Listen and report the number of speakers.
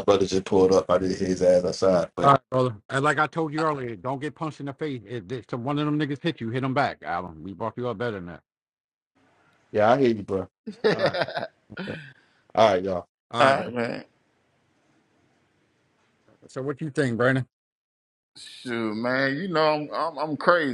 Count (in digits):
3